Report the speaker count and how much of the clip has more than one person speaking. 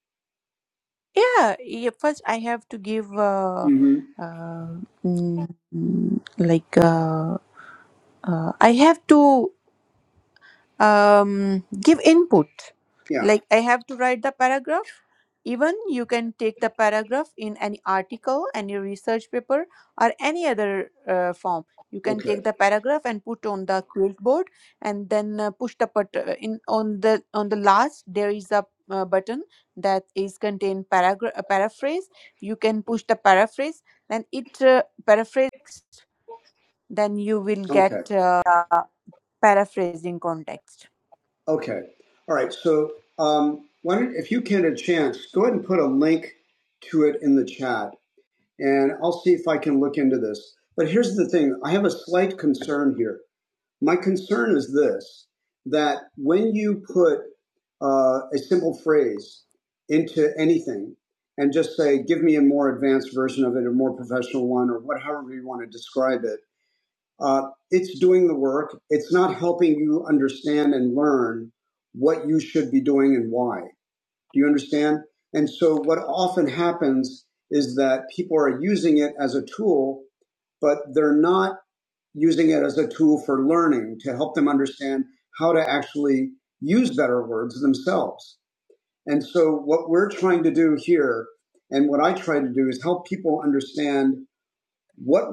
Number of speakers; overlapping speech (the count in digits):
2, about 1%